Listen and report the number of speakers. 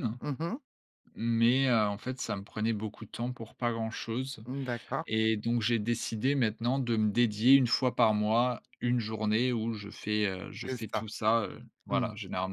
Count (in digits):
2